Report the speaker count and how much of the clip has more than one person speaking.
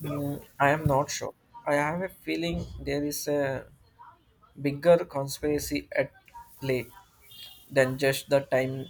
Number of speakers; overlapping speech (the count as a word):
one, no overlap